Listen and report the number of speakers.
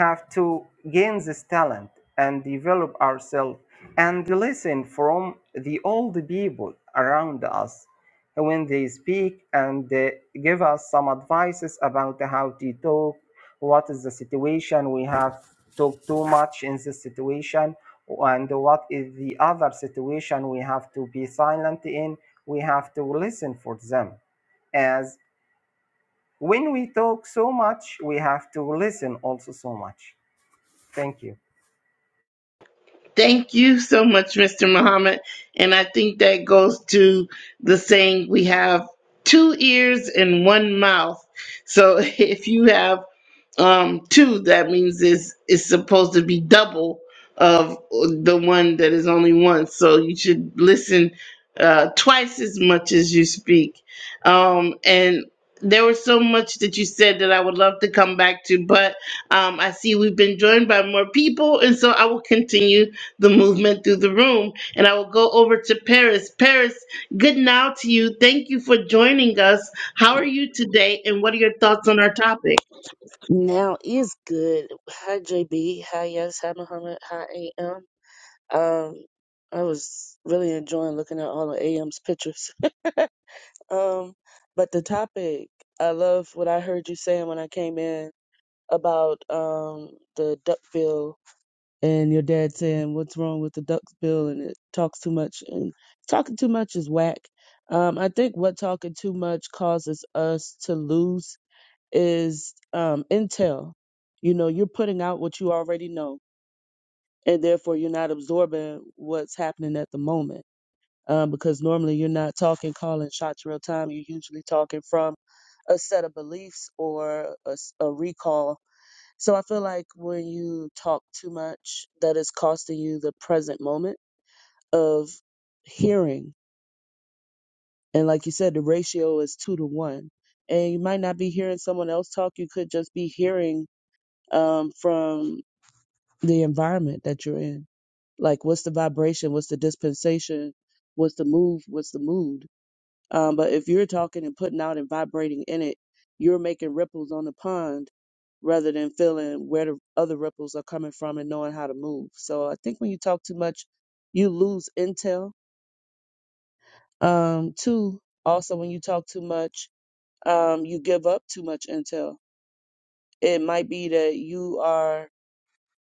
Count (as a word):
three